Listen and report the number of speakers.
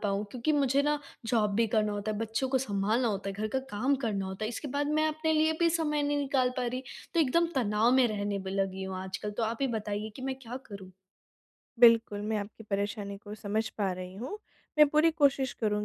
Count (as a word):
two